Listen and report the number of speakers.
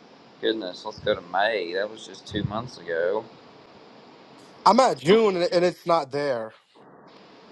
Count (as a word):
two